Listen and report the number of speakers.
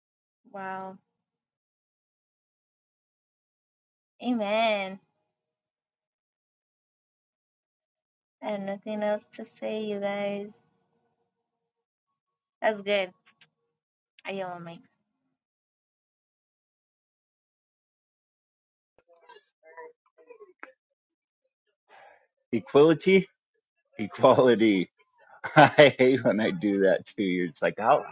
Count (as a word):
two